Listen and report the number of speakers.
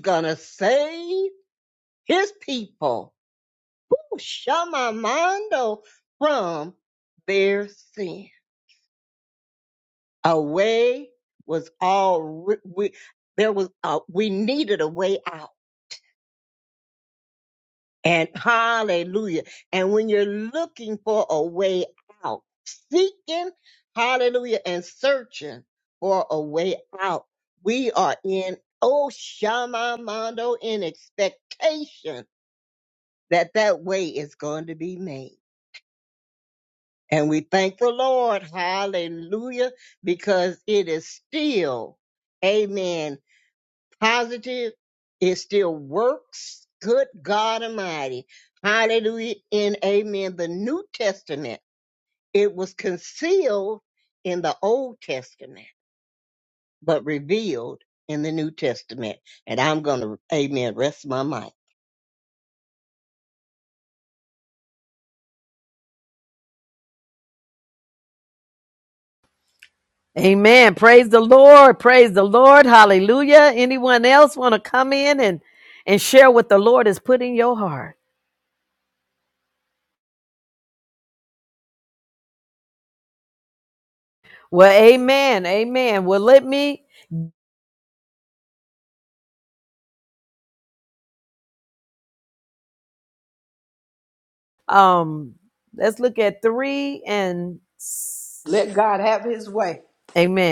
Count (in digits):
3